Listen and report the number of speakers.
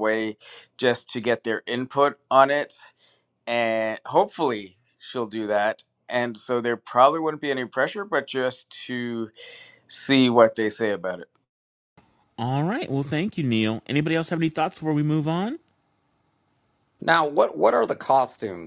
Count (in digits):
3